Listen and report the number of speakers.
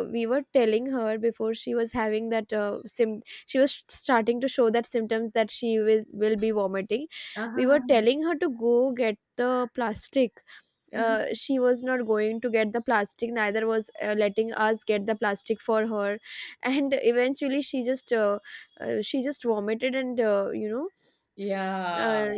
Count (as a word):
two